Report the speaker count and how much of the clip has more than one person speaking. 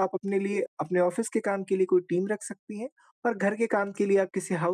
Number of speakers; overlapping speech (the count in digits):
1, no overlap